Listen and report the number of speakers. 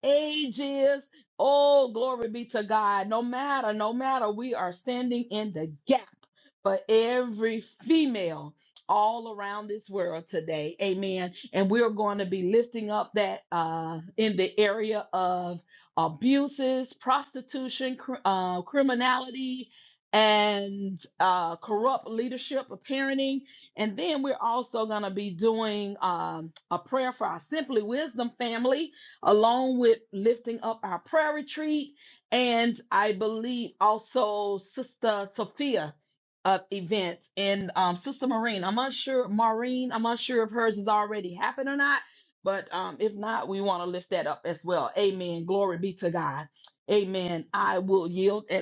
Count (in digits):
1